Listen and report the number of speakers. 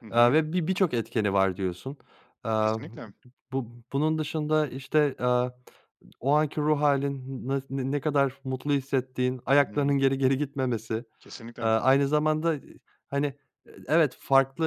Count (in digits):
2